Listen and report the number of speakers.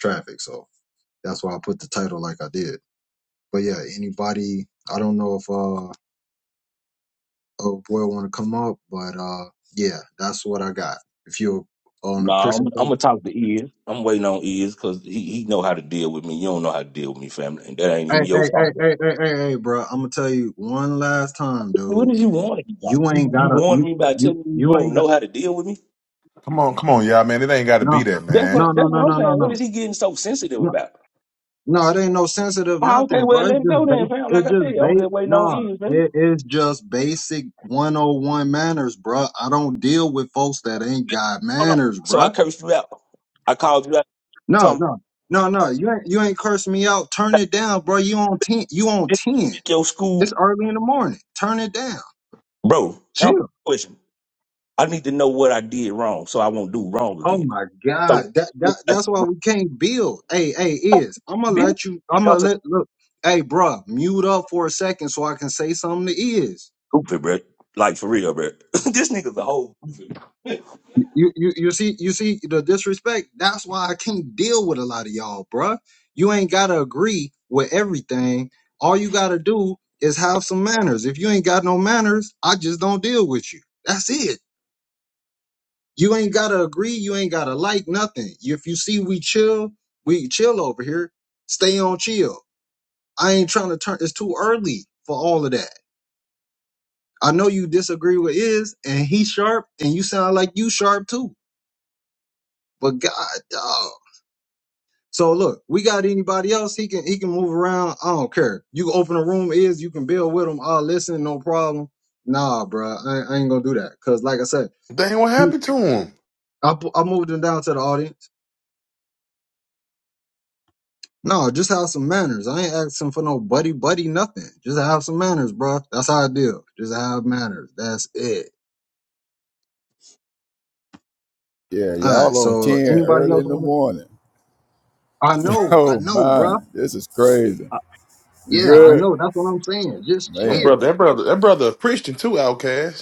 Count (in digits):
4